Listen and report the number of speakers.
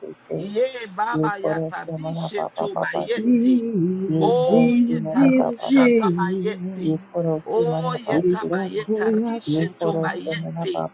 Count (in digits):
3